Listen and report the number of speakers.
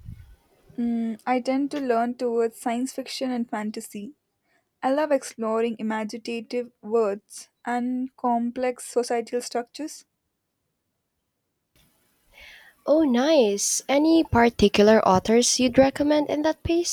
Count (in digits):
2